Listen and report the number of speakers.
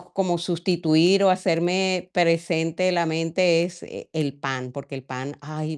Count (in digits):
1